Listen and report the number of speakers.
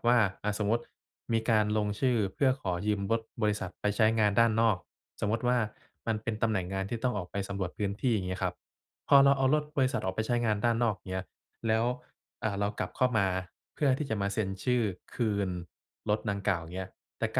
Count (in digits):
1